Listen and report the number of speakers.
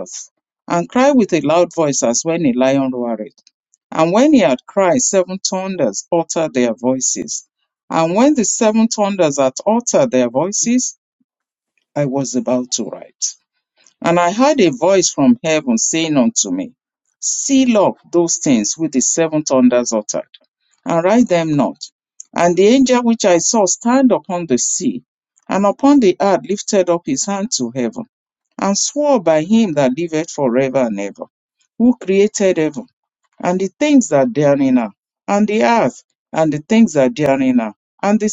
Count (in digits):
1